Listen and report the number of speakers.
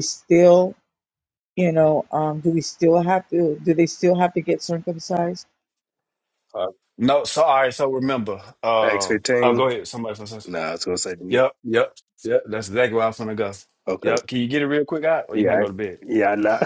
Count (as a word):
three